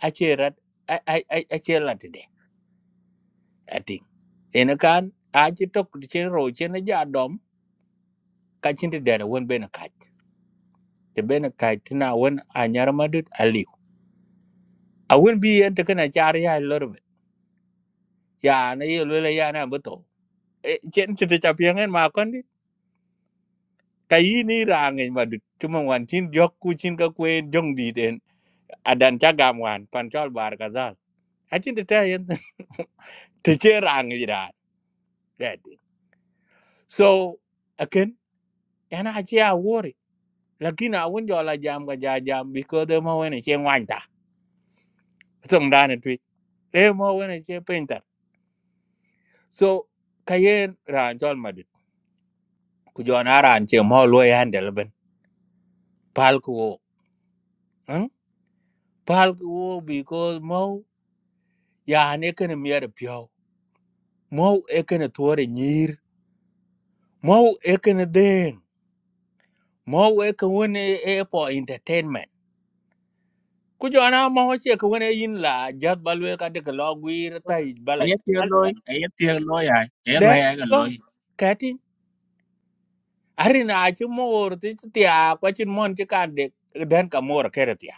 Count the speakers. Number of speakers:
2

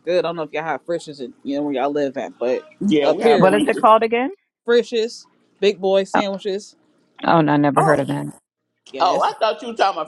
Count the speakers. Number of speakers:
3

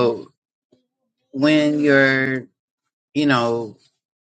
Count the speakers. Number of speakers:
1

